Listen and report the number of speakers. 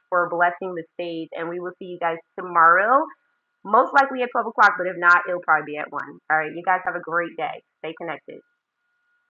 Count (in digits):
1